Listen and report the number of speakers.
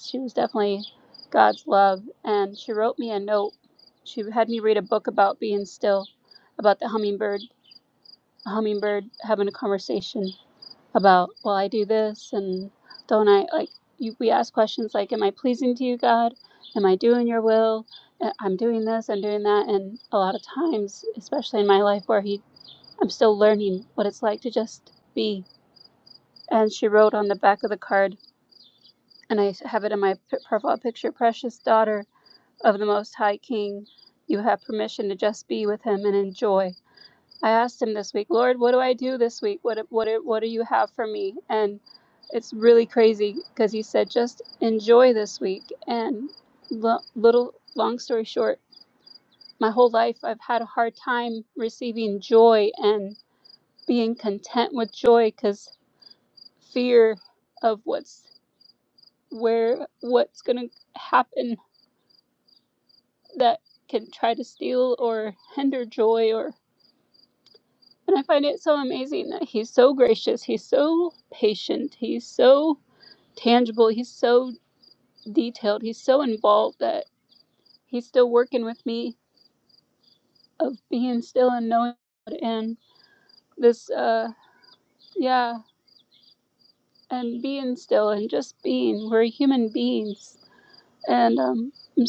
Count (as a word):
one